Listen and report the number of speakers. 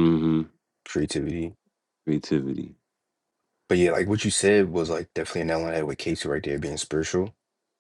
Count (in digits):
2